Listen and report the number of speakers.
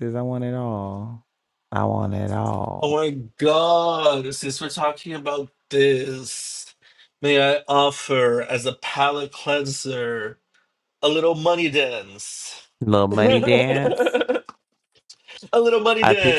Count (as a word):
two